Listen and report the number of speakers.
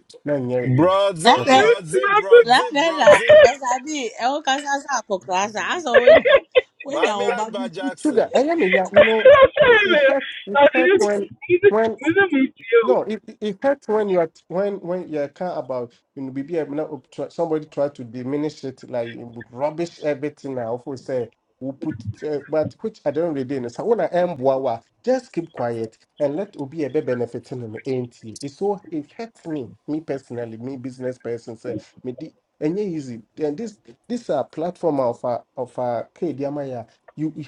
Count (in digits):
4